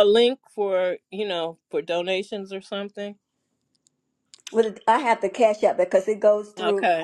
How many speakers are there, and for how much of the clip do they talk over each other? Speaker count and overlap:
two, about 7%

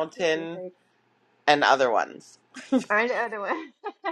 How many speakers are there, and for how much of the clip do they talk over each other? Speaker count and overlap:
two, about 15%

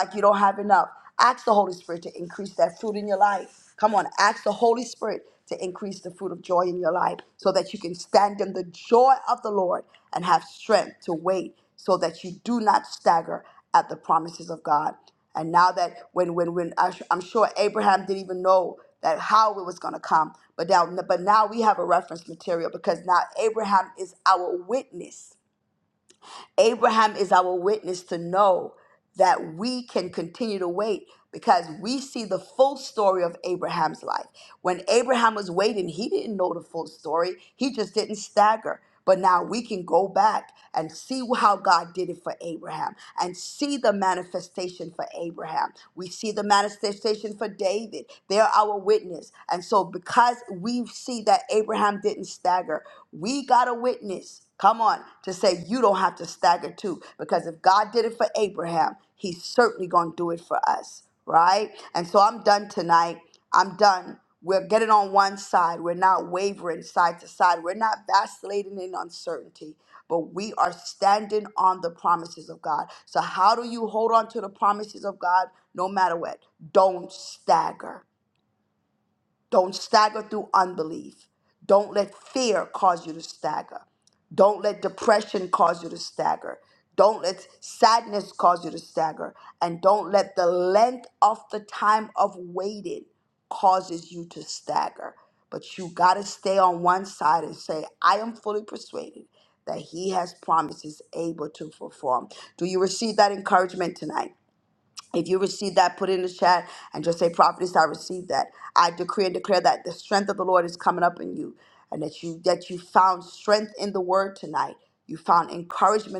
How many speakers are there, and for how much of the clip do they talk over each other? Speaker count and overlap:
one, no overlap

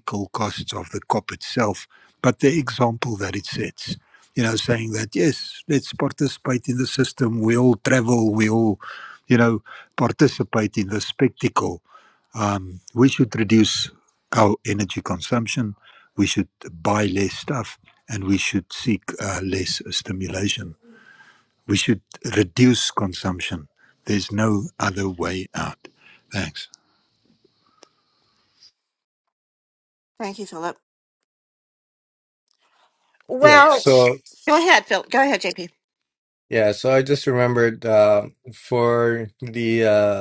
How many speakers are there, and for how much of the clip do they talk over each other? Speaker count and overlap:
three, about 1%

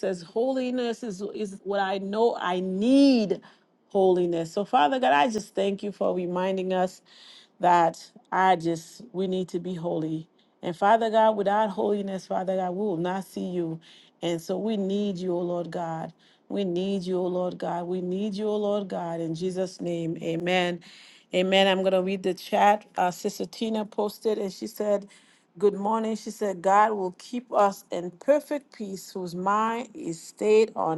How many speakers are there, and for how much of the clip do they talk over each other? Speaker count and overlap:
one, no overlap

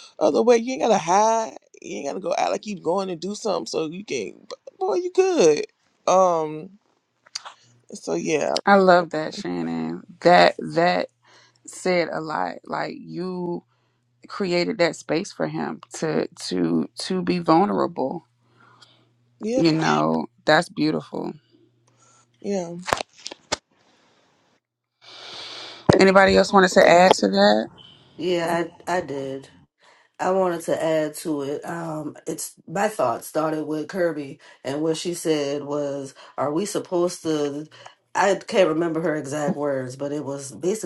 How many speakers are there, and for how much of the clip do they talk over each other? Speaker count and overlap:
three, under 1%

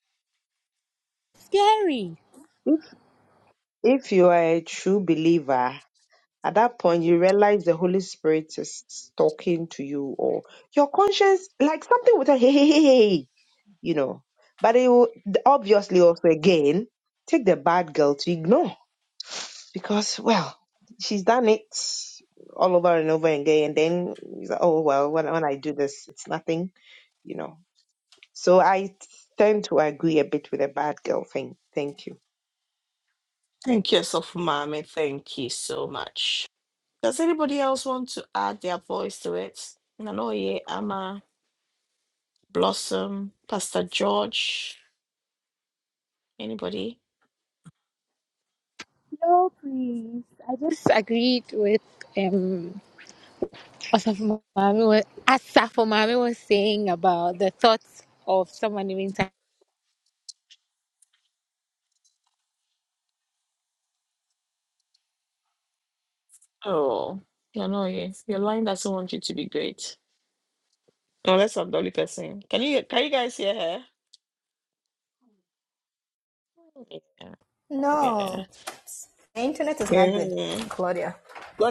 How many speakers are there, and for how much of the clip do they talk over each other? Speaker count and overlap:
four, about 1%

